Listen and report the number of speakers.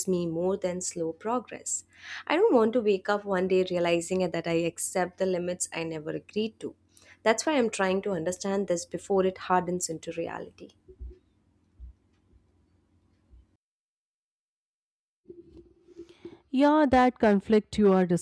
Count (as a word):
two